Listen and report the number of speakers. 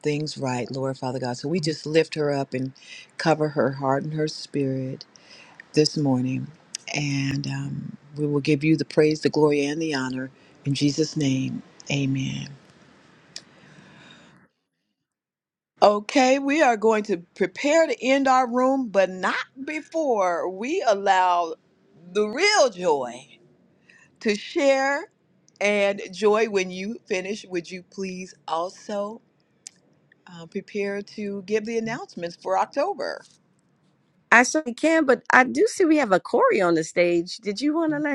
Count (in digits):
2